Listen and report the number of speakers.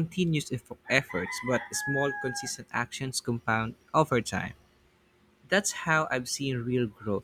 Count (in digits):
1